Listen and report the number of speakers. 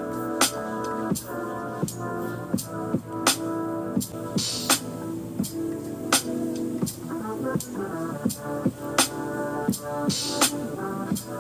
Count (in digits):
0